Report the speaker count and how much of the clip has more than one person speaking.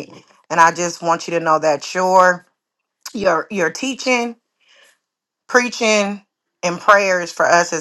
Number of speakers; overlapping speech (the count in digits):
1, no overlap